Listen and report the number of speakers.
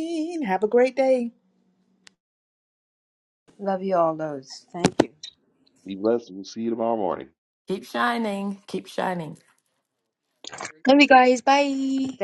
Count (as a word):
five